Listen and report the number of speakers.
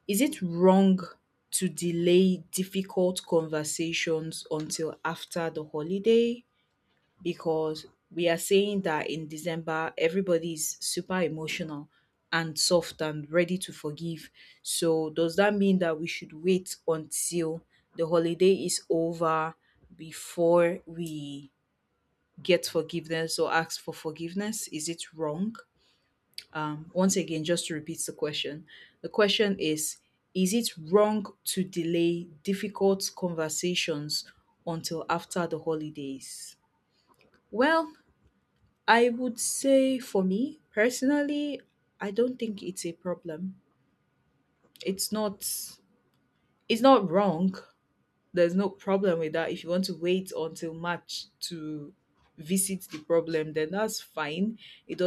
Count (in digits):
1